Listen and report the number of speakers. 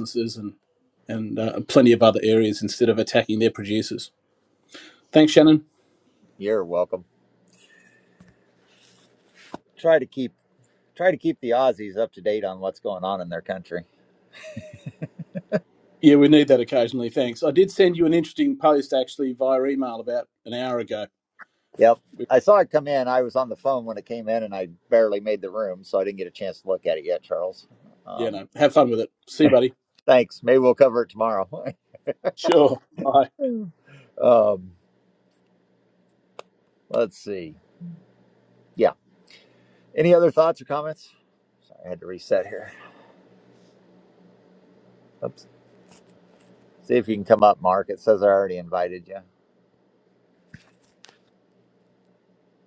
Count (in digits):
2